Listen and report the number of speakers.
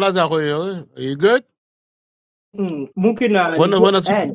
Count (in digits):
2